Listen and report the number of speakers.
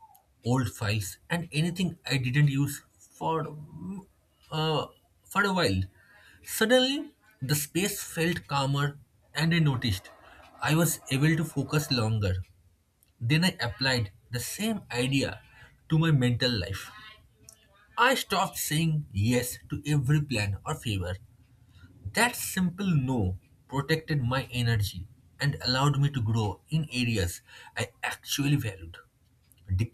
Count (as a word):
one